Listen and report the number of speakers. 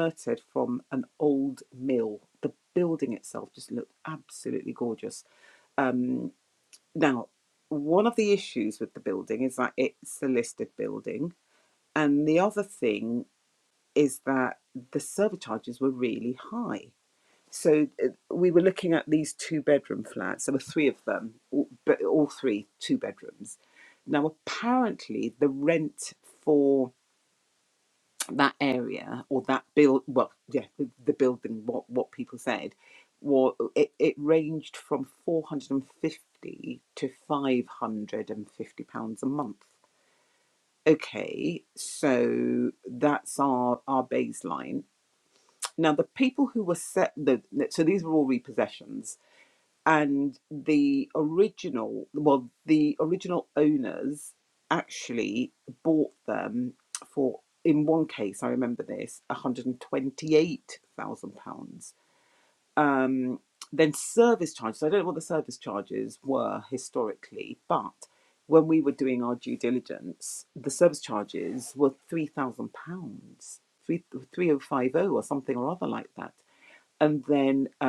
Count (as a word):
one